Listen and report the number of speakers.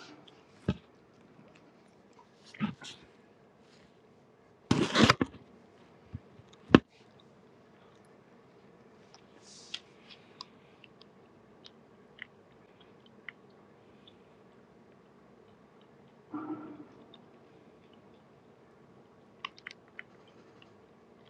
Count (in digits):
0